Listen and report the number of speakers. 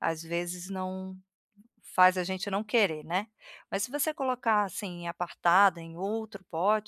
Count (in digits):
1